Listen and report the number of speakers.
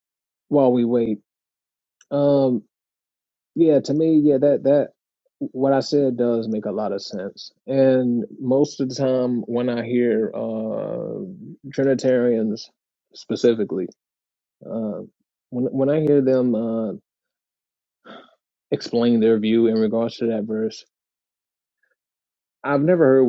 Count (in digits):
1